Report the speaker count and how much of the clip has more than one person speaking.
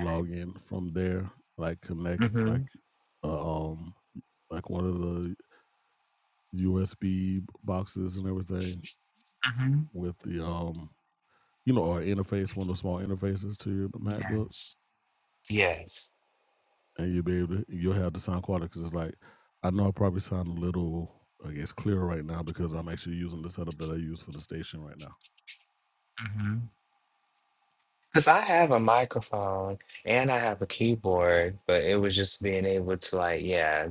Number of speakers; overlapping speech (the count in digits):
2, about 2%